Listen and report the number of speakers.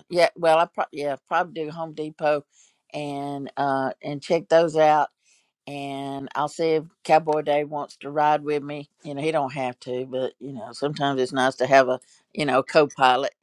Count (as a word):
one